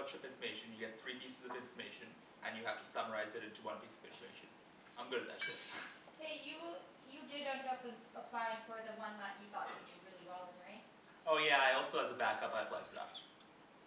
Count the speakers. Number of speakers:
2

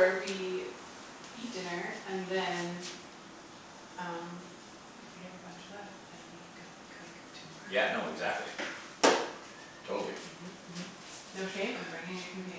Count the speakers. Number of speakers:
2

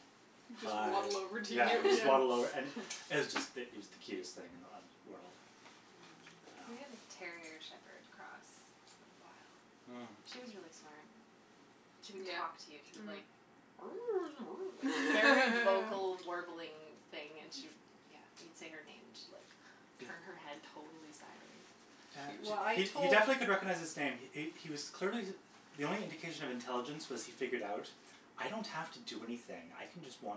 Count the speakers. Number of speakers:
4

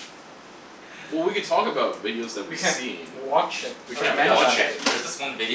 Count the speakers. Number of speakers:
3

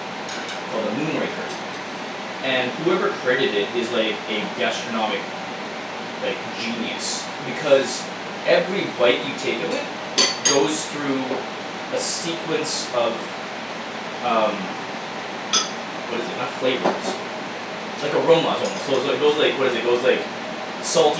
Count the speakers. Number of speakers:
1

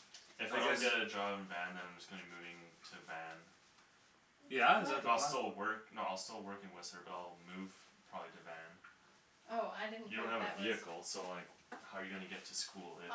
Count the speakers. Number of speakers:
3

